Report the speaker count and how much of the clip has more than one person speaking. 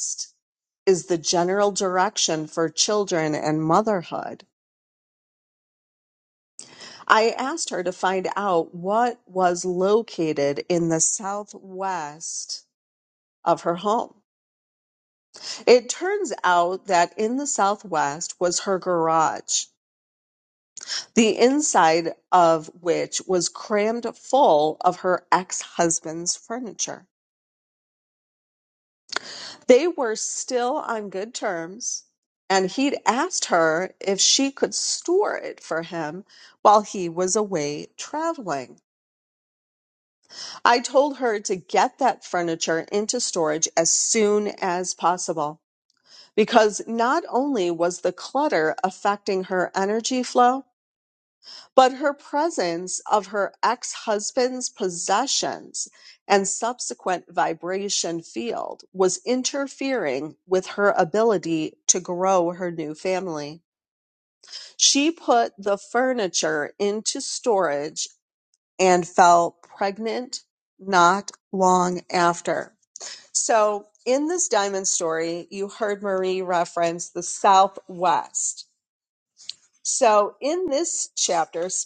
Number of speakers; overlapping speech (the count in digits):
1, no overlap